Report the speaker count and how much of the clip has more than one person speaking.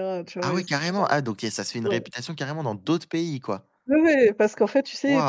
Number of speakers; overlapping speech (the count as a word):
two, about 21%